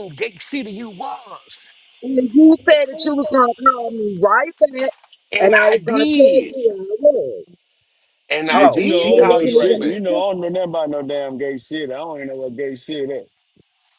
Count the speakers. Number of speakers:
3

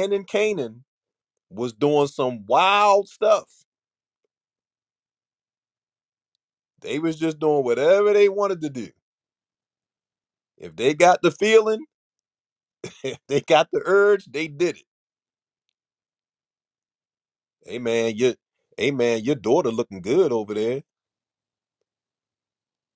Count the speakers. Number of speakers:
1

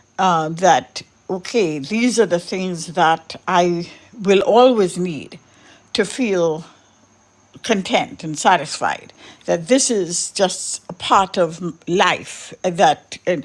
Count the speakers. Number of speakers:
1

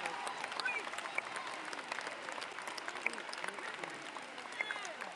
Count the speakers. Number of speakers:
0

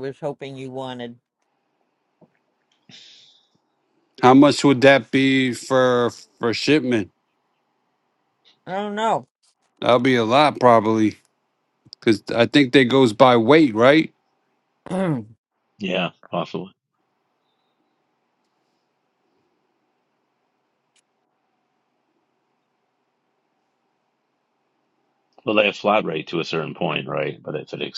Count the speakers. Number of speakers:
3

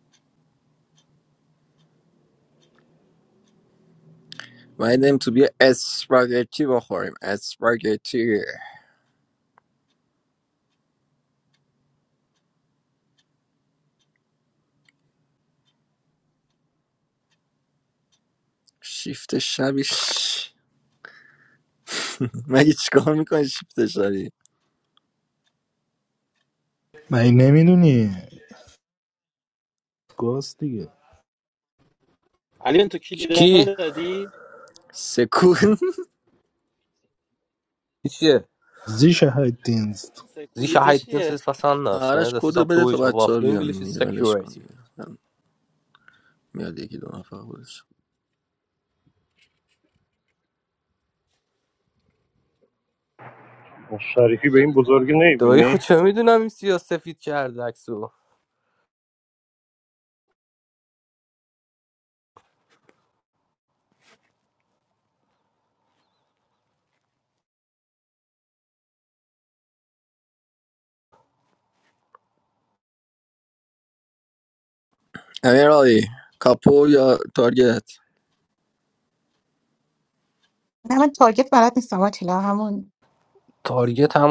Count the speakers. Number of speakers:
6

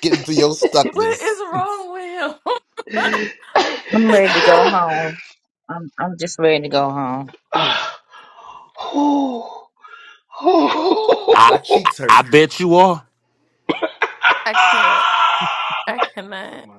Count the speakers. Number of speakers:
5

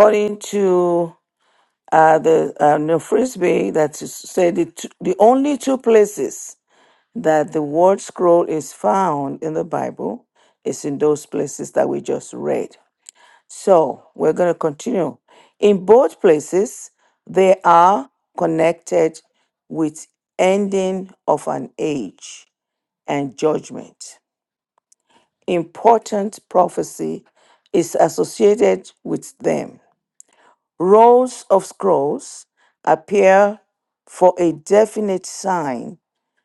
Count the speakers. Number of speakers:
1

